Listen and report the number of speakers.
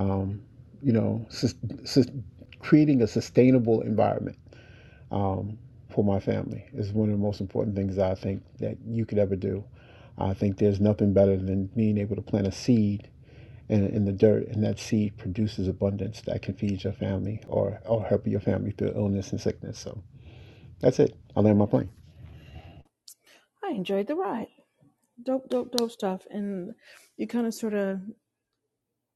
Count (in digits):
2